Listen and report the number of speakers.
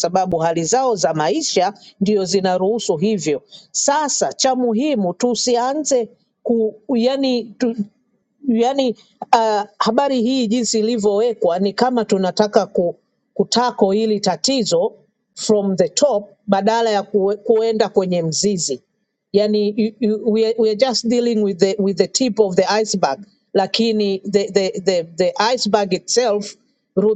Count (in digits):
1